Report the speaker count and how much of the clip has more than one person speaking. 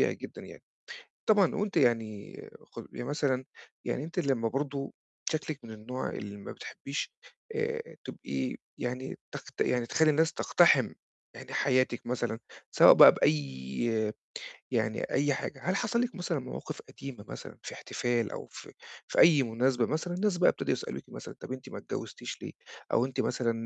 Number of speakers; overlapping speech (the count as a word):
one, no overlap